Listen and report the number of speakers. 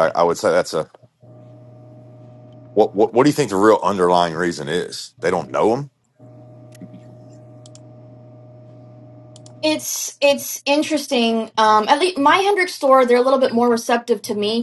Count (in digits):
2